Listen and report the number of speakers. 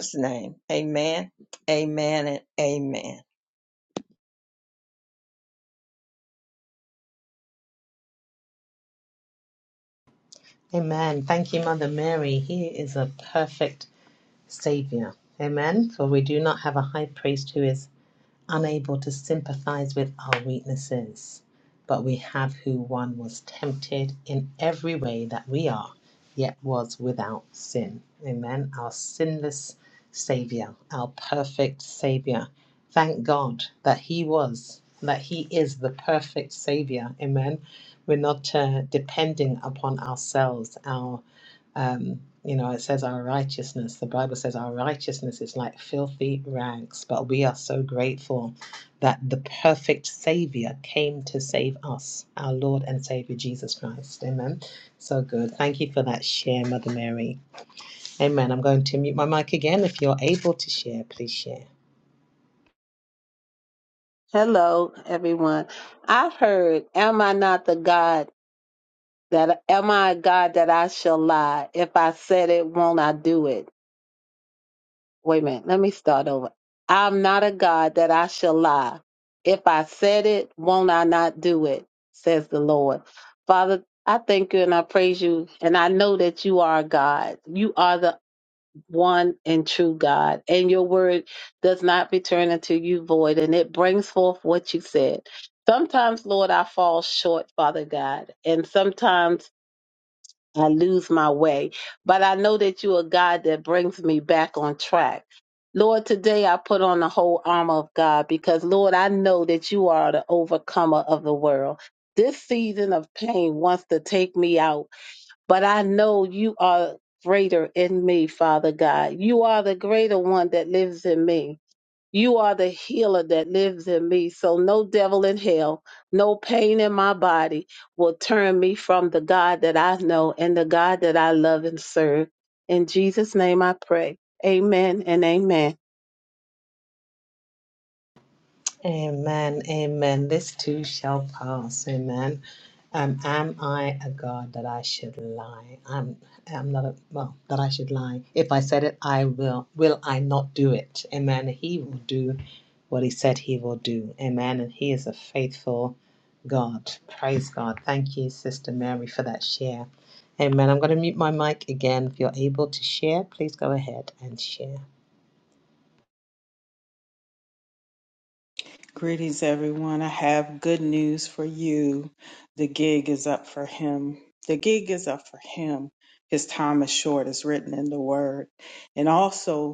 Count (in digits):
4